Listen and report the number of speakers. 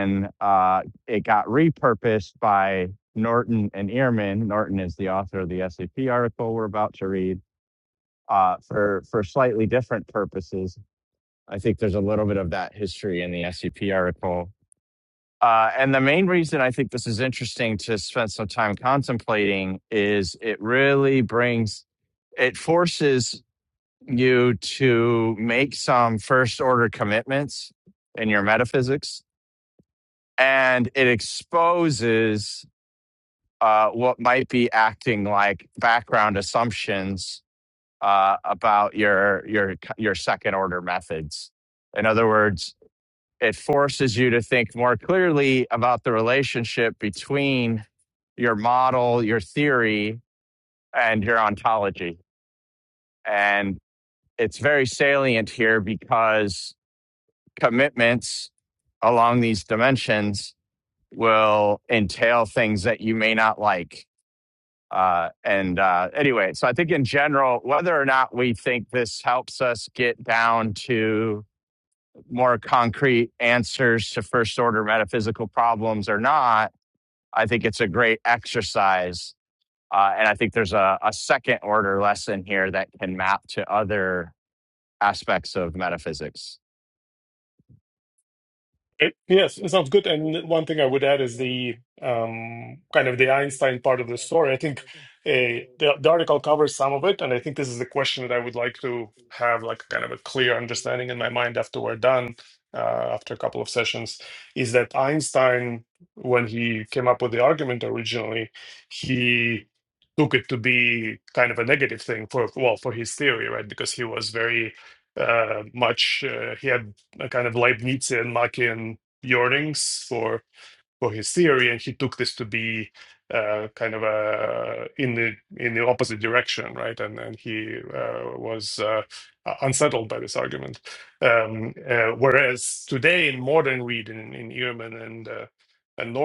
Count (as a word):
two